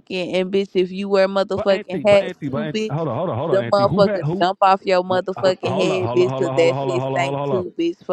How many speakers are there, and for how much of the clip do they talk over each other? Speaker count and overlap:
2, about 60%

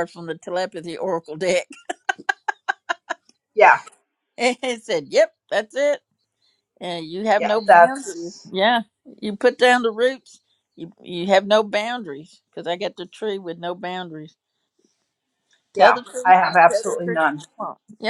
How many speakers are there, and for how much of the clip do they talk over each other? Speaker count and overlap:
2, about 10%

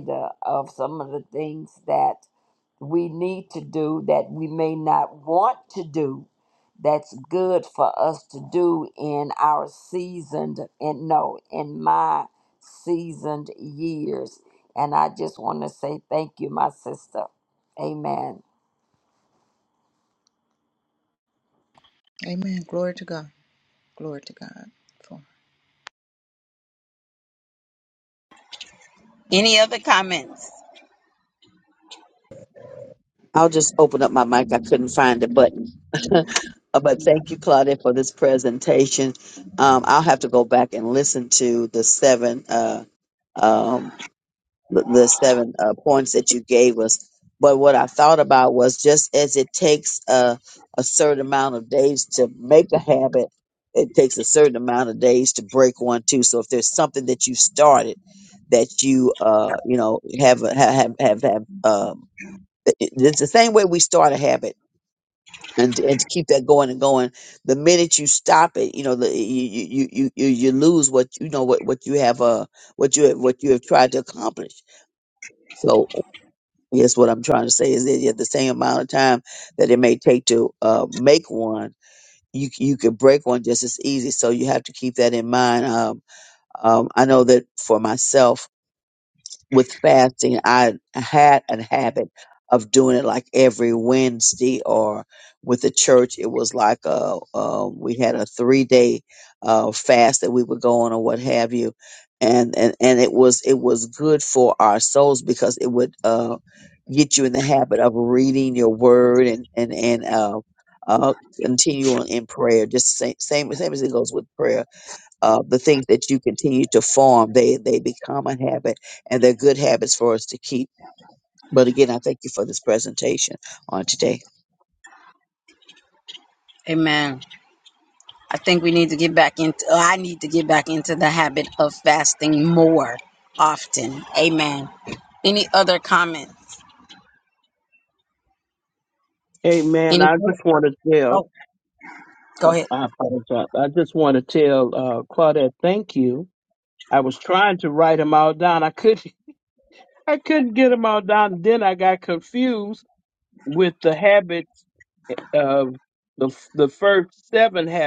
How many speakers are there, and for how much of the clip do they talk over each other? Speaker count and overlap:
5, under 1%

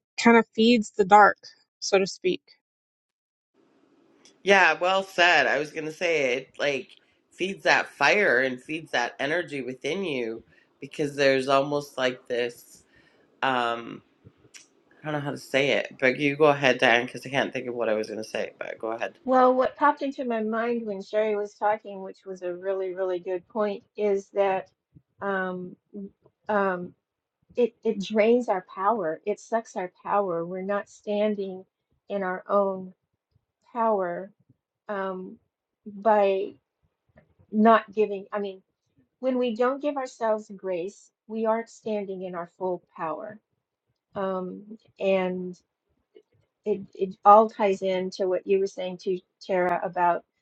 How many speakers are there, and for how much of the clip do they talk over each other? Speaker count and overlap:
3, no overlap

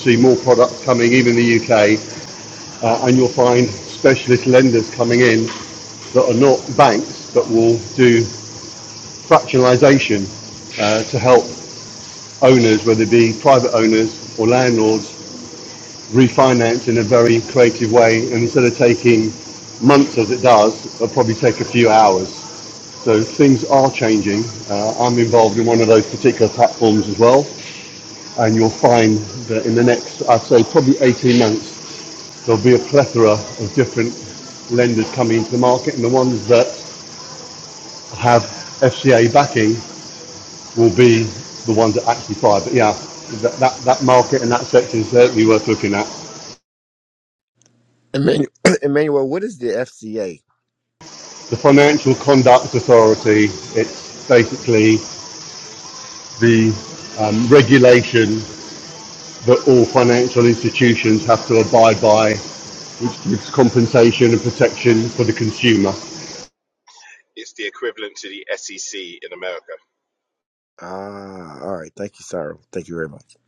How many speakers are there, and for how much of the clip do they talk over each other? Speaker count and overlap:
3, no overlap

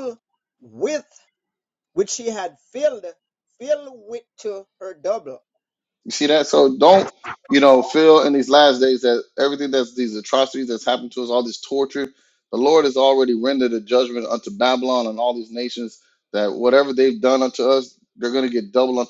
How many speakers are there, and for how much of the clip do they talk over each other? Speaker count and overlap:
2, no overlap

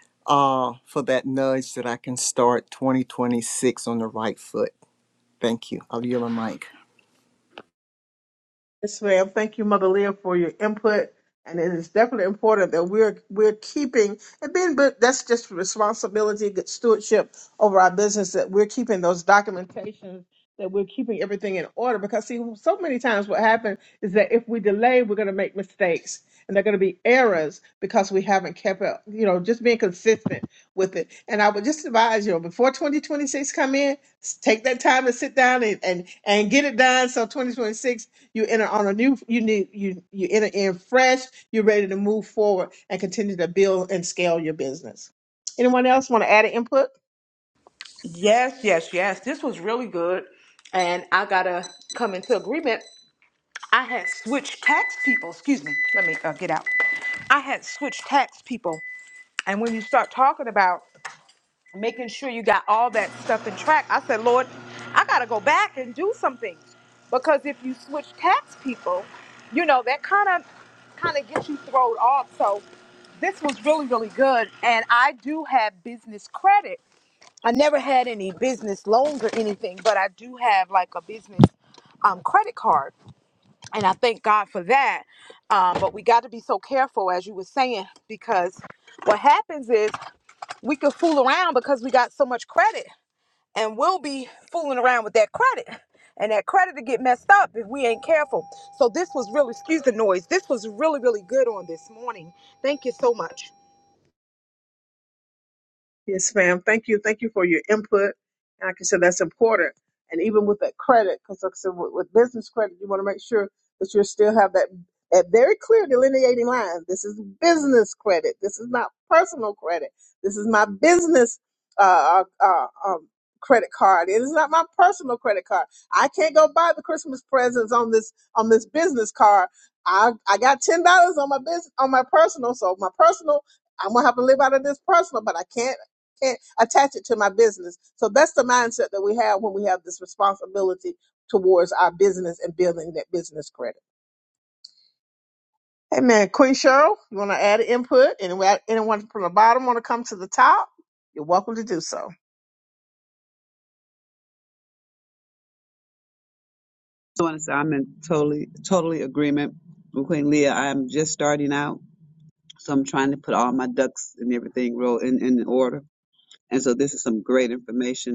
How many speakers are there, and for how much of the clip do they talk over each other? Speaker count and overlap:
4, no overlap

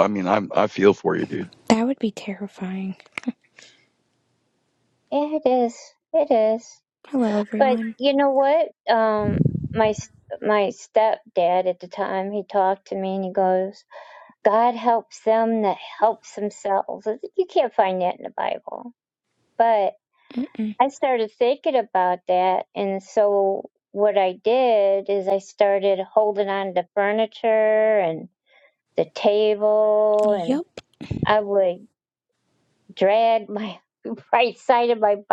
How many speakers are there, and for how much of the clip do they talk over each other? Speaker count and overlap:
3, about 2%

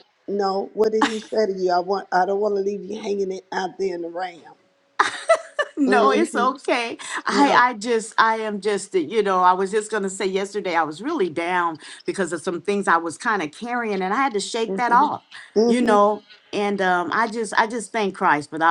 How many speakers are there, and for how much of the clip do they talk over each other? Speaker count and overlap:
2, about 9%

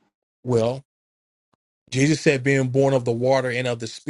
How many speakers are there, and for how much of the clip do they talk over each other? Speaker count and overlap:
1, no overlap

